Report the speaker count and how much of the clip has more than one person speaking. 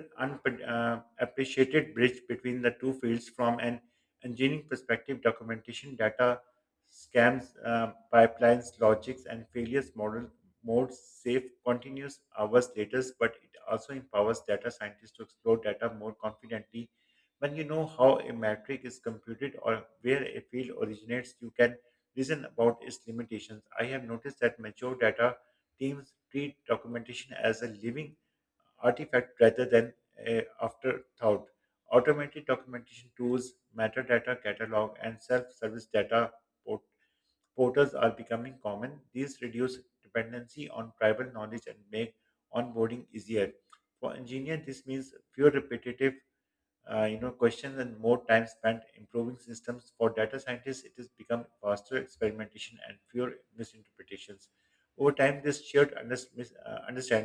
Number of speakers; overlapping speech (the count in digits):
1, no overlap